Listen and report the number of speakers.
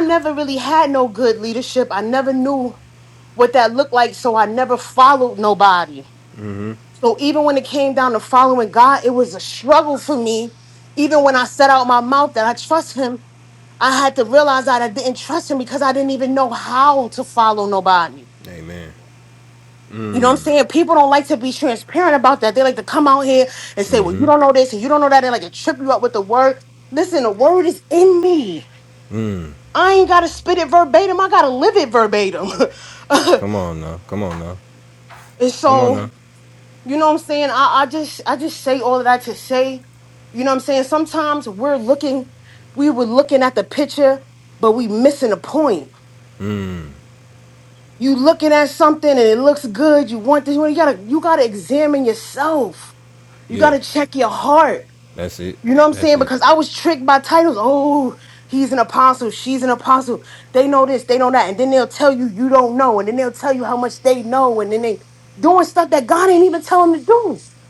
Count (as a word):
two